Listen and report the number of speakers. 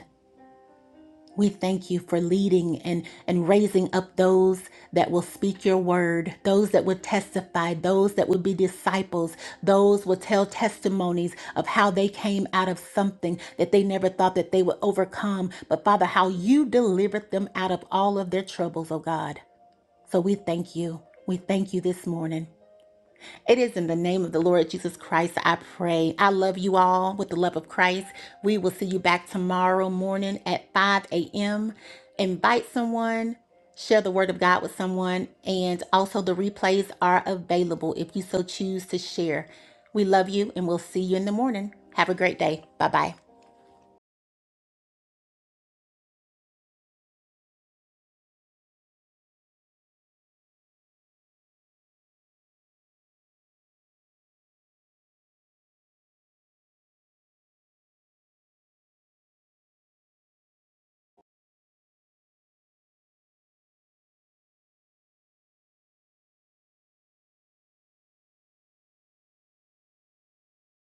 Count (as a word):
one